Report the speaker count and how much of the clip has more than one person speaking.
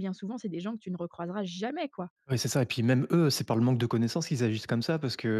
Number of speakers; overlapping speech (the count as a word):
two, no overlap